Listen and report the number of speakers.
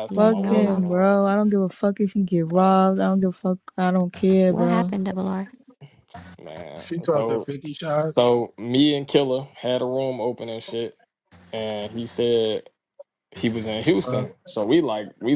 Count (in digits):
4